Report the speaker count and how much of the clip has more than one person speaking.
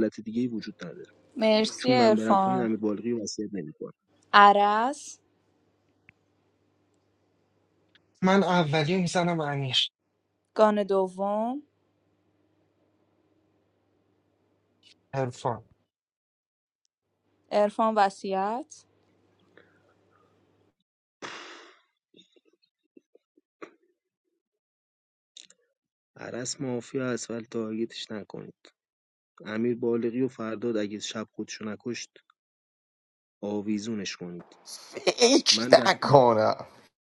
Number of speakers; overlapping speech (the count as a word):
four, about 4%